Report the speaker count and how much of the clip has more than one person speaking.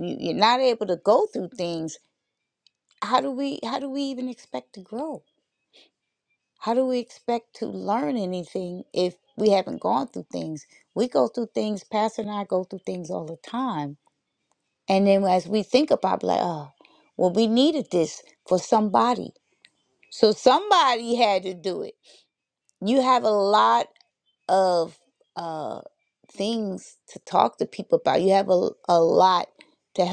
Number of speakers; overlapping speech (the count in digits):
1, no overlap